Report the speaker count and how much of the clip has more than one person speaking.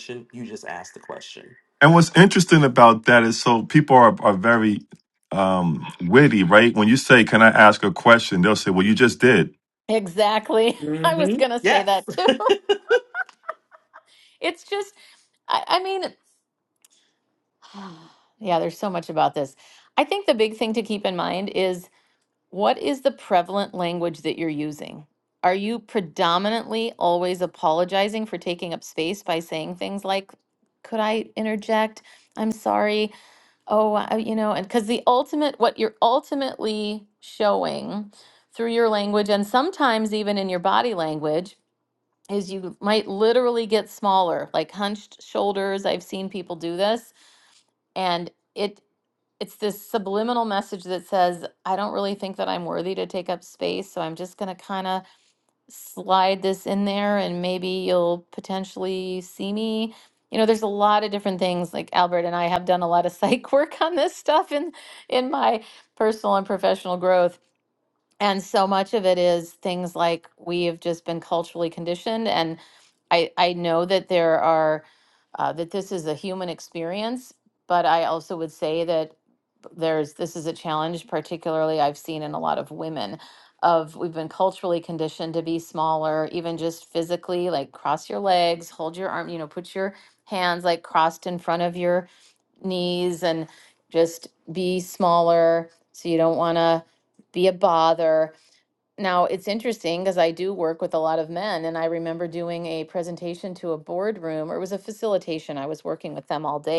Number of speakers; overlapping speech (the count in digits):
3, about 1%